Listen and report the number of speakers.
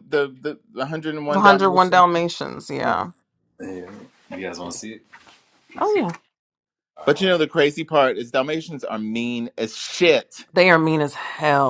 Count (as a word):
three